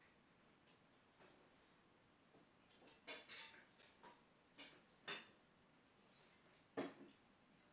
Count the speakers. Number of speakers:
0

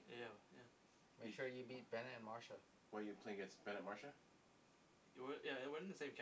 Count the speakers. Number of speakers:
3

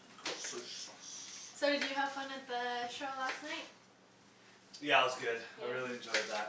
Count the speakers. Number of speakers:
2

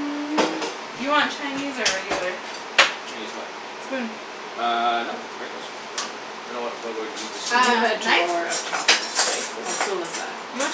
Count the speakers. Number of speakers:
3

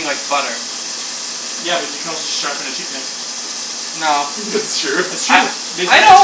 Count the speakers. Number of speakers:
3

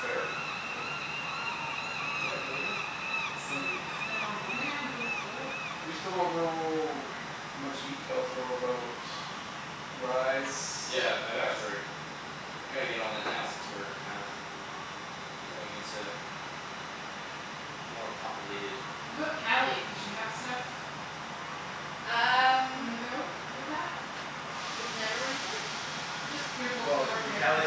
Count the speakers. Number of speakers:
4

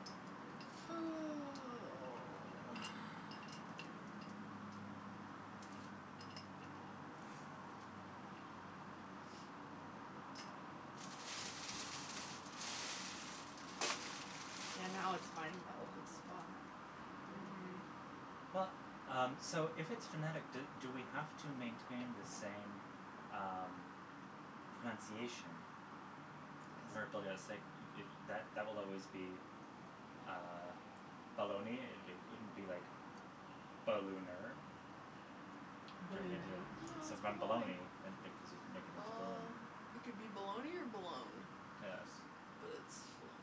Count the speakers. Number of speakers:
3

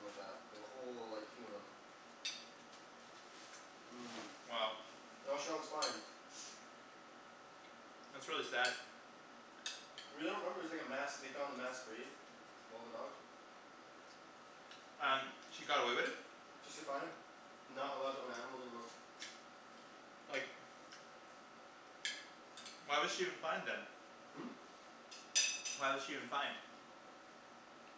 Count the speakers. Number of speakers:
2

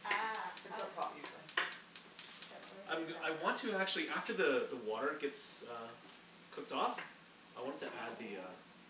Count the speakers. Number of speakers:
3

